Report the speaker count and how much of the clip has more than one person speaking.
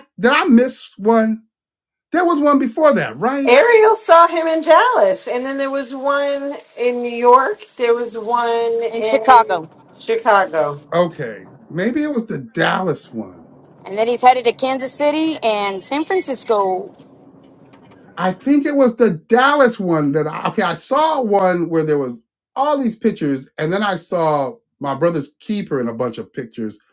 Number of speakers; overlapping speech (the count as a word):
three, about 3%